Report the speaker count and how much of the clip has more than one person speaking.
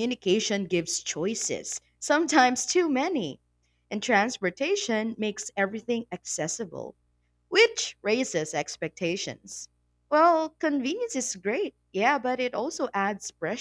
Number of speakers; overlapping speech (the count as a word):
one, no overlap